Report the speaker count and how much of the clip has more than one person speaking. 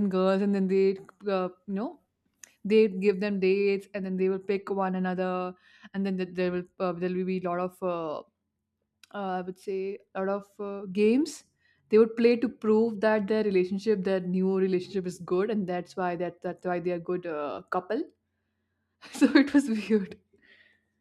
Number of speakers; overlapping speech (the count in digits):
1, no overlap